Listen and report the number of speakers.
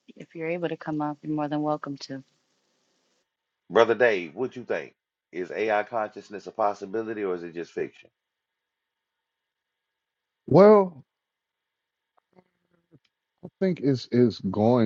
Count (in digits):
3